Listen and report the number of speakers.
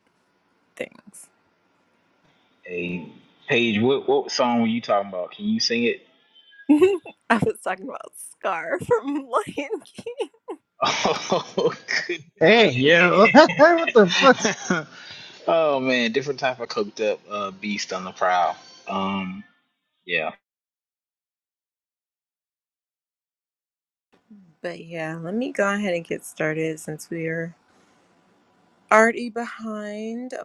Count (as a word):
three